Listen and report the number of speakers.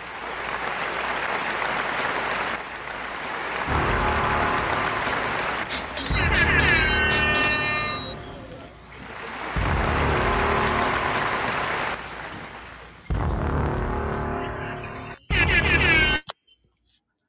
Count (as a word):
zero